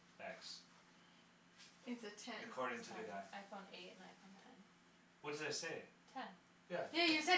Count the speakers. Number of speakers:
3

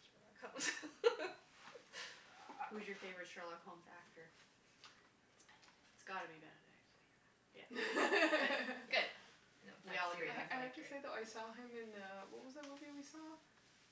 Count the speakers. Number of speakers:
3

